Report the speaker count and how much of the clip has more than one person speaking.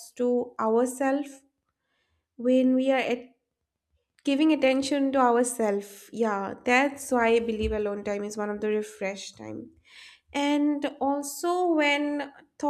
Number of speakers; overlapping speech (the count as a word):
one, no overlap